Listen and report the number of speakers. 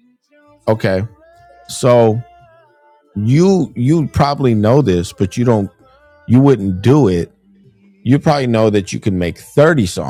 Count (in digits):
1